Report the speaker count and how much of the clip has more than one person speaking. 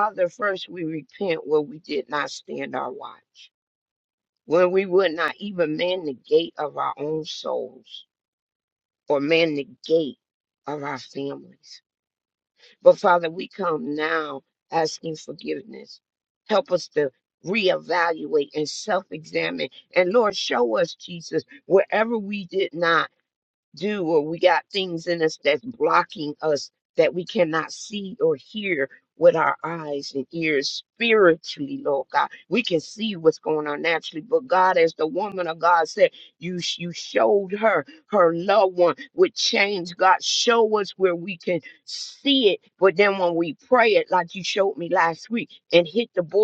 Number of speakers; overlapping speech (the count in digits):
1, no overlap